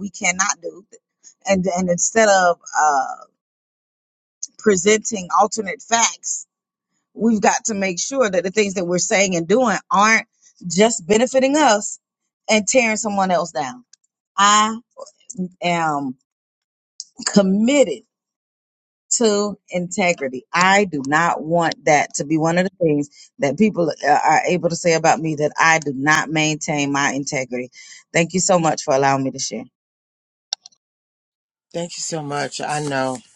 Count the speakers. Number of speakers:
2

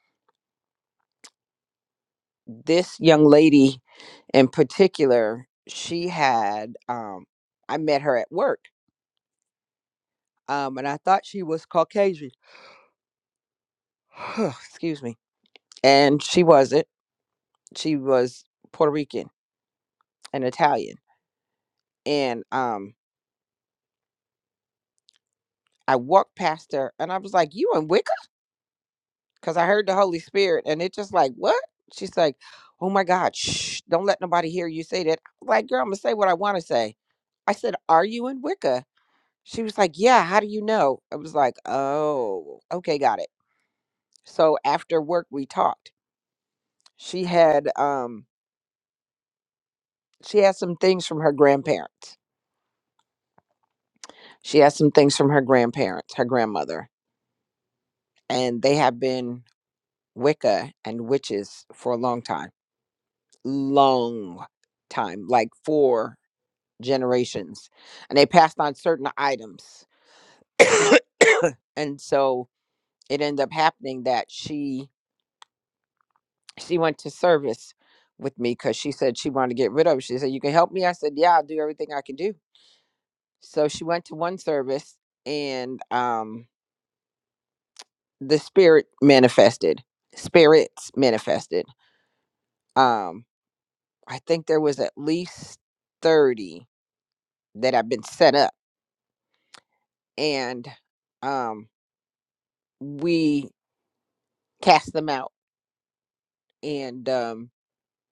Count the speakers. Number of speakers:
1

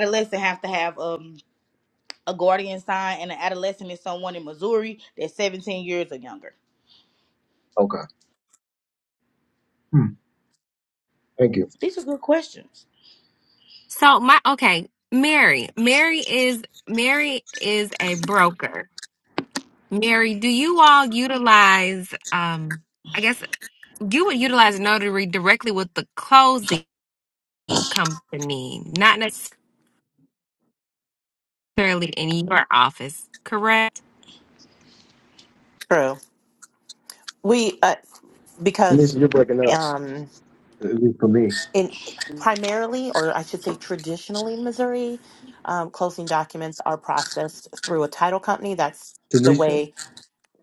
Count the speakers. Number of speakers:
4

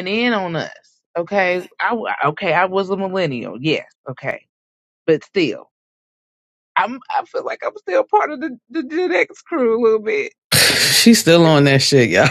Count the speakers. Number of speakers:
2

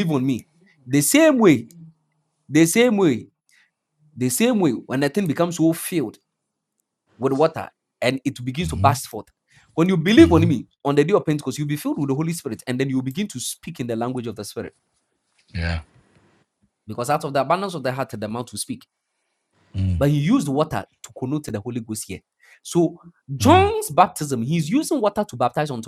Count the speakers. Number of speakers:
2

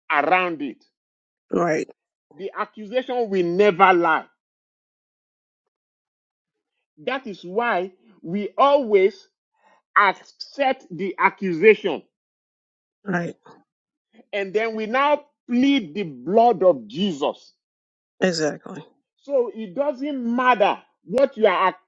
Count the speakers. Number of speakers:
2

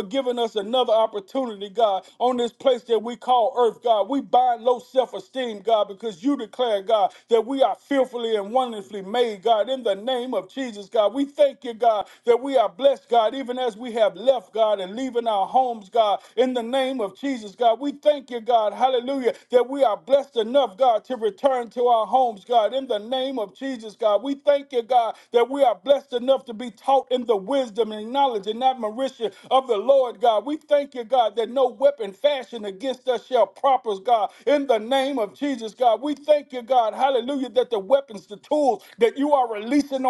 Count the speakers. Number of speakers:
1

